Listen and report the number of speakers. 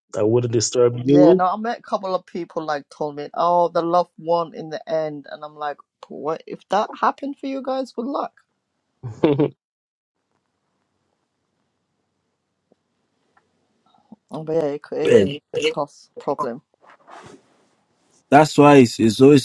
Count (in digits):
3